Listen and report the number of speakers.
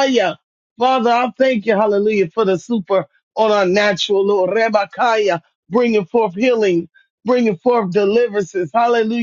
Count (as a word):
one